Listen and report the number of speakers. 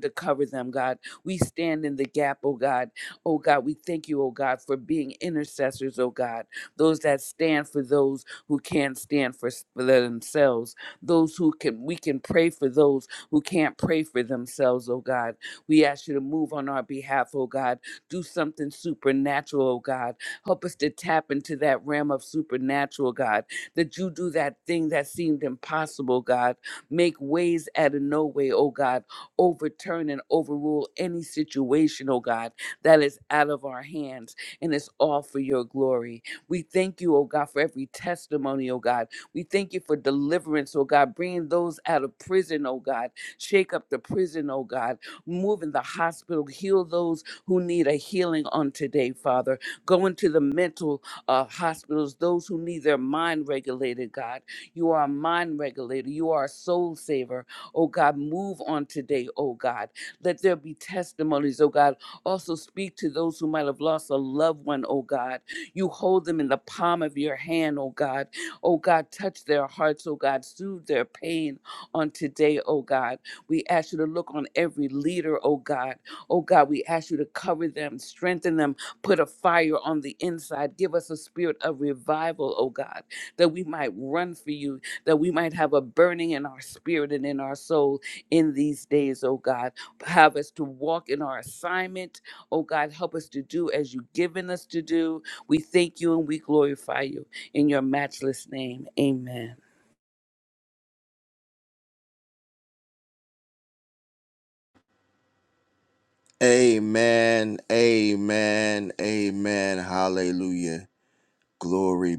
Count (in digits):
2